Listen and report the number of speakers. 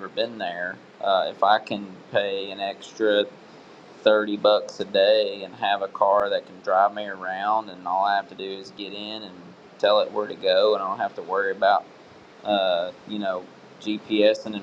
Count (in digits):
1